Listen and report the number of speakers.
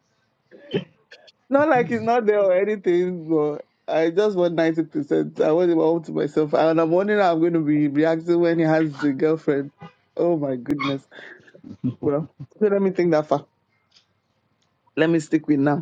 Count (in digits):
1